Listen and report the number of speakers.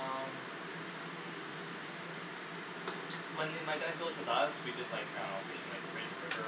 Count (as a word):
one